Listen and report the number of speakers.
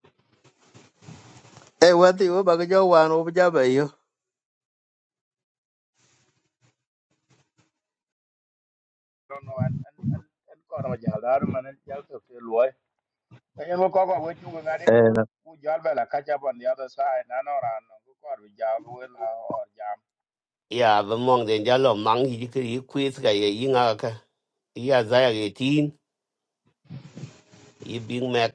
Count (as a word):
three